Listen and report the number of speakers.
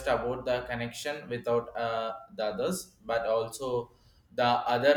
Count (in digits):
1